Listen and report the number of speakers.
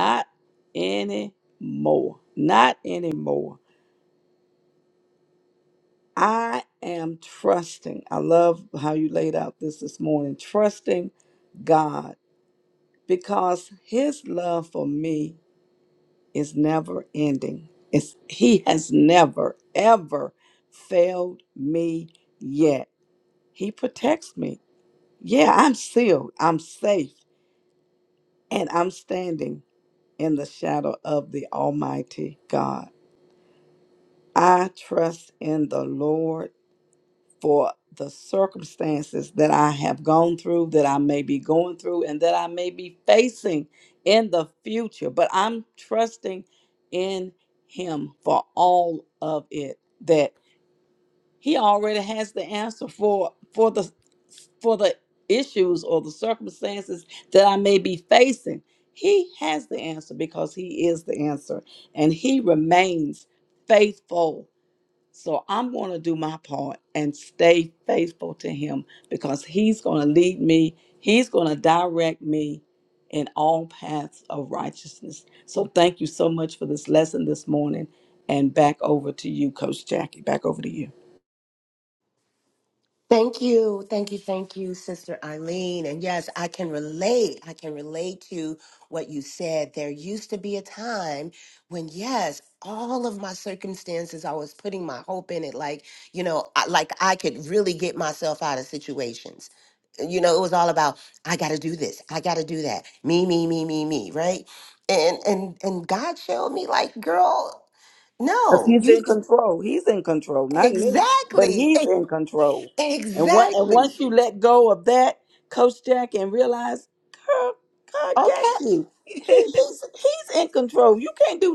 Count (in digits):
2